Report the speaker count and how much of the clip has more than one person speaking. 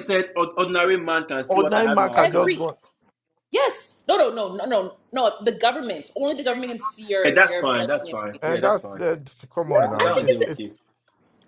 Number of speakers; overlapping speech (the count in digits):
3, about 32%